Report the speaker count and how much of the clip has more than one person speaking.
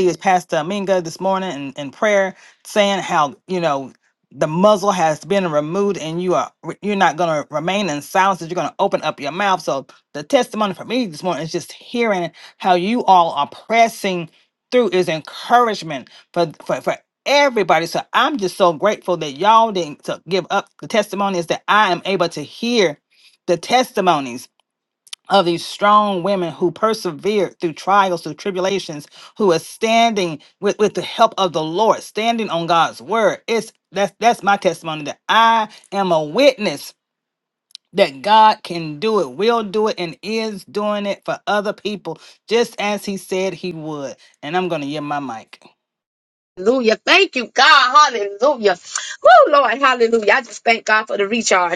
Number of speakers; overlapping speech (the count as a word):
two, no overlap